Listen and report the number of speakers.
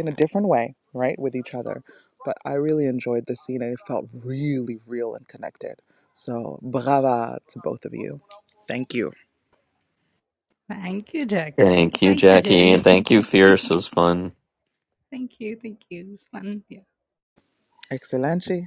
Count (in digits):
3